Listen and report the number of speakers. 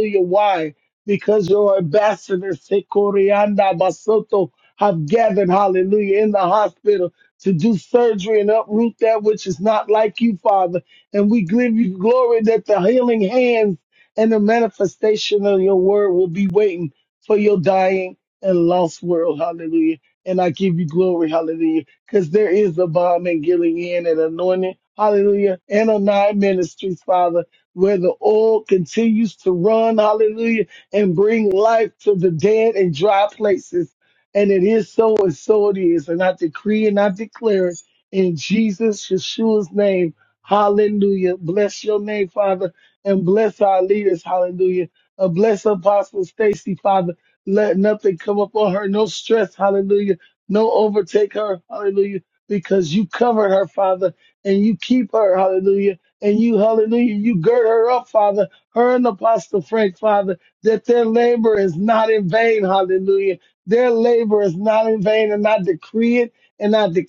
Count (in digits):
1